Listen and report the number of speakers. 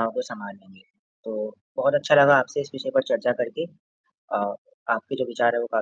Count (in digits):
1